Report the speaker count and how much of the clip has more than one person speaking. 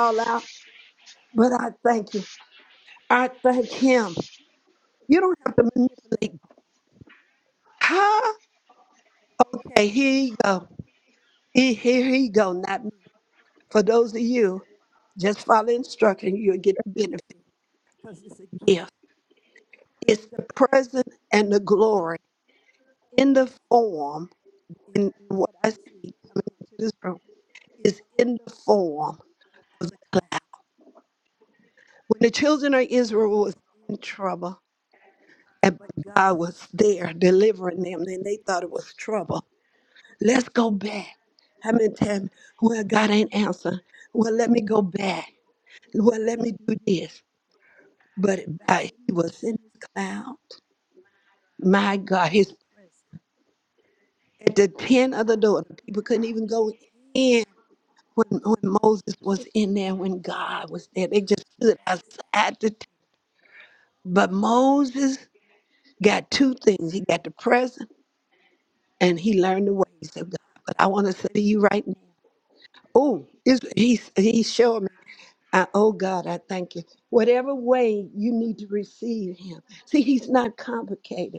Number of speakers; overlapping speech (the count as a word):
one, no overlap